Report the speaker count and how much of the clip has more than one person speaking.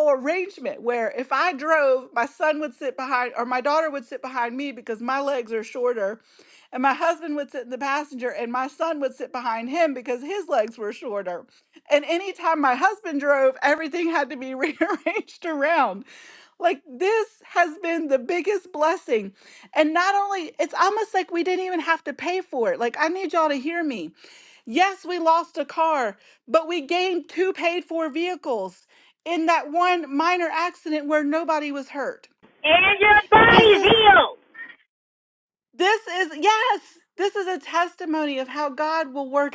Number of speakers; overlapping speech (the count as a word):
two, about 1%